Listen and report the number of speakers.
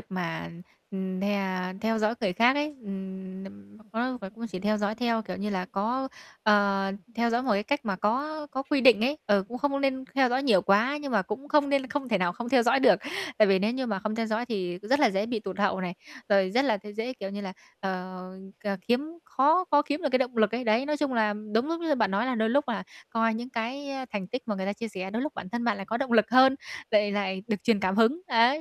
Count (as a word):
one